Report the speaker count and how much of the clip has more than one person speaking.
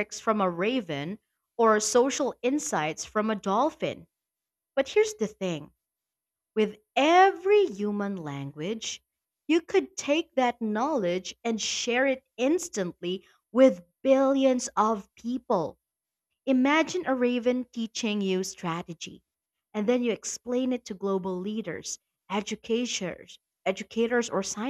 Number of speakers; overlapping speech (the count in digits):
1, no overlap